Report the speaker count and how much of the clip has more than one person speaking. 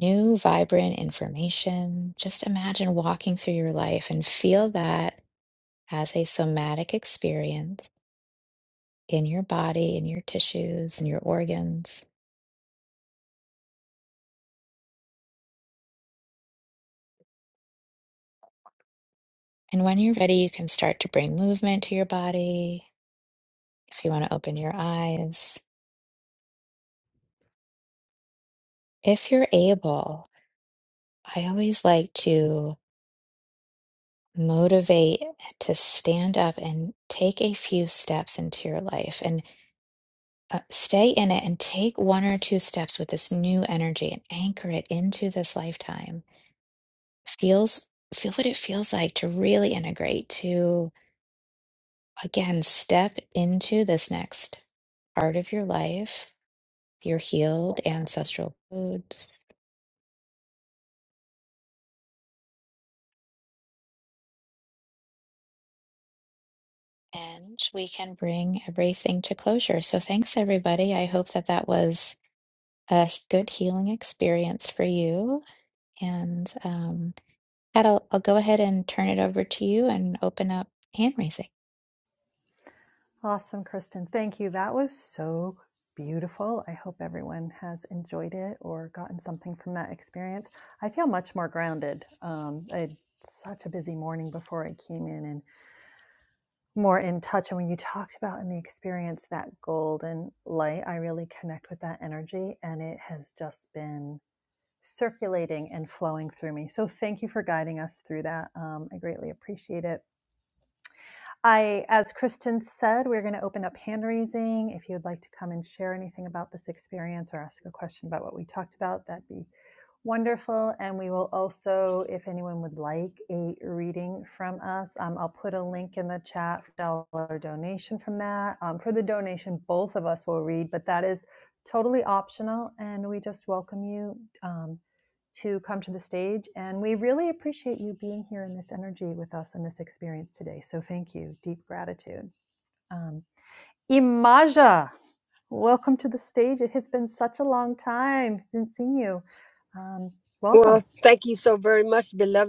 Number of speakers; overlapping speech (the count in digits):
3, under 1%